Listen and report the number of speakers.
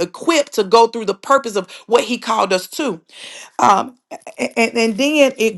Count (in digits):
1